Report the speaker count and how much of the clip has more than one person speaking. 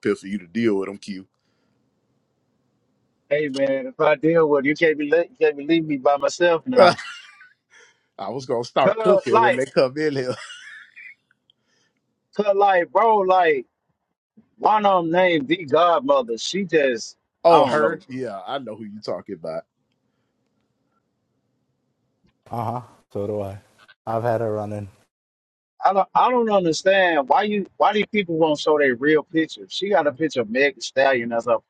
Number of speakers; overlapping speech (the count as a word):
three, about 4%